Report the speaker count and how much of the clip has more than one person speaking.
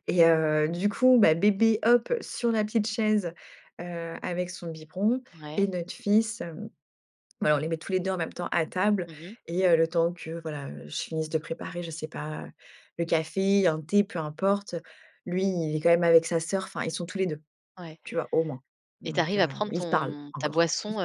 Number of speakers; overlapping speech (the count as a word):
two, about 8%